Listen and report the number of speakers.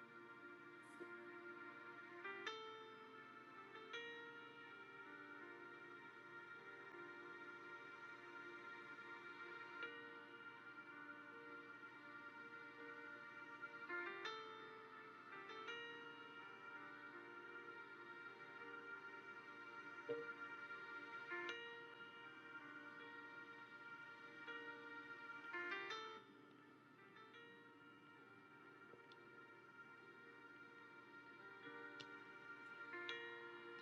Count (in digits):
0